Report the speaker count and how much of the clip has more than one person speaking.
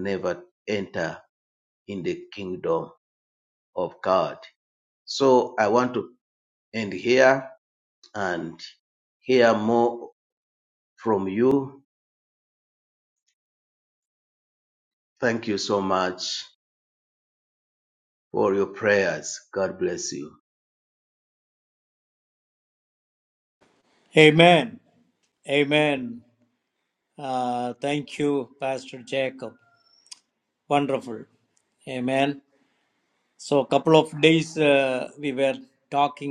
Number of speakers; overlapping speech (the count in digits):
2, no overlap